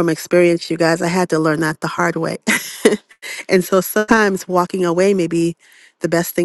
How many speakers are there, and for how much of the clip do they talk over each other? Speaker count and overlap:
one, no overlap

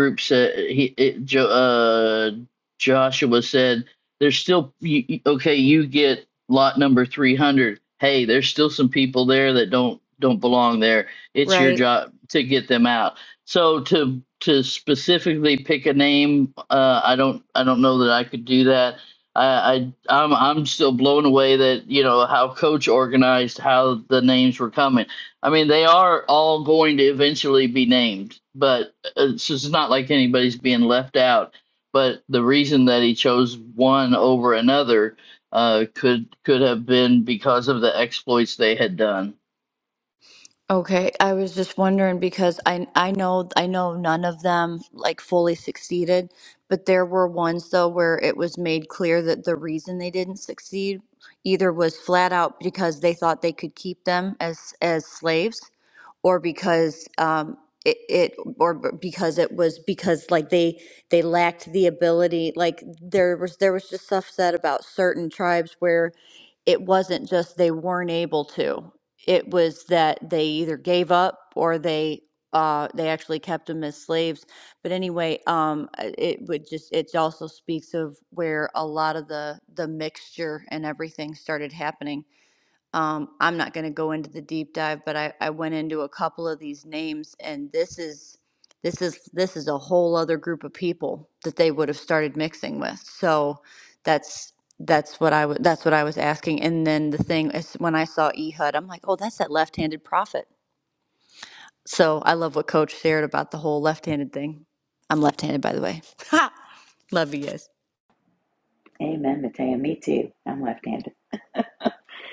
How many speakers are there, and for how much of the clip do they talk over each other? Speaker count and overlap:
three, under 1%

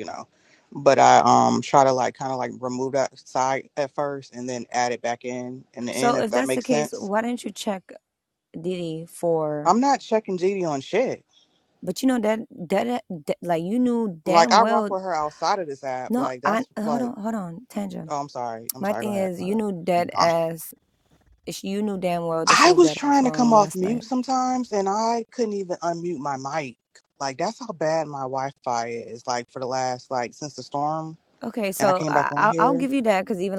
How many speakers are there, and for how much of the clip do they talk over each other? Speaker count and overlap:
two, about 18%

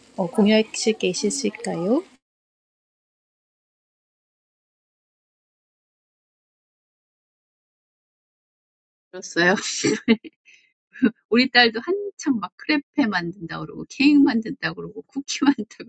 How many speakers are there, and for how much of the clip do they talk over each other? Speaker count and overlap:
two, no overlap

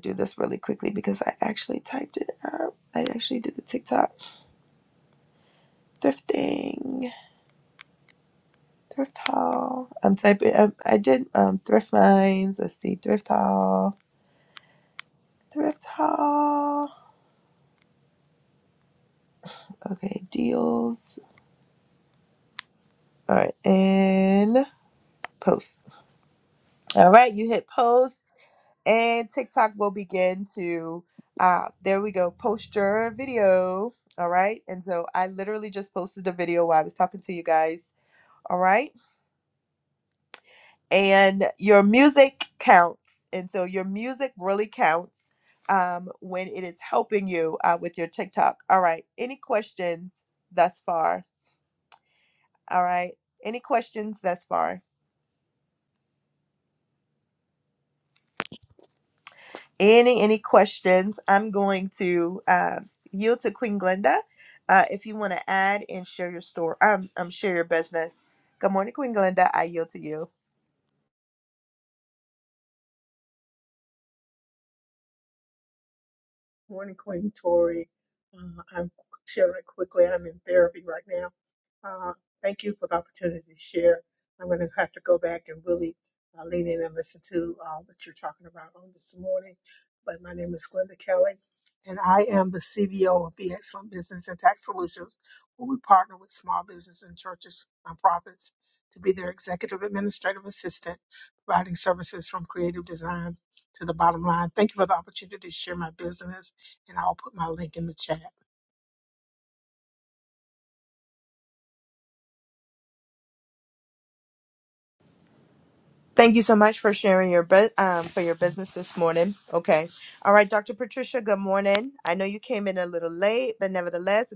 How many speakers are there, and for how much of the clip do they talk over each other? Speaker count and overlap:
two, no overlap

